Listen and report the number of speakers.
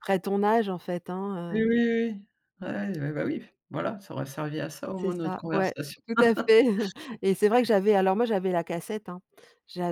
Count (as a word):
two